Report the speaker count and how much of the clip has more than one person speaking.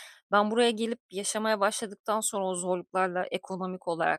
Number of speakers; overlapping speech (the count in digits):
1, no overlap